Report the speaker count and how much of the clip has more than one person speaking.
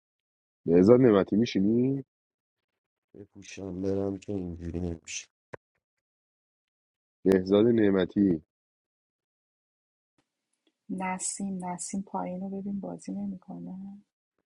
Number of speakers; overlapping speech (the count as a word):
three, no overlap